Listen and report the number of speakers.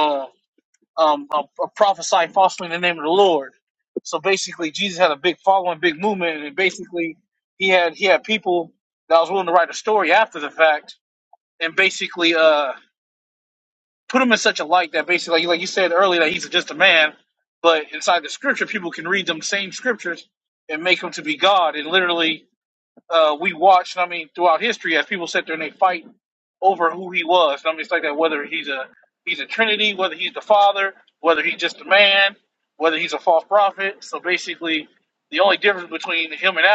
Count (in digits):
1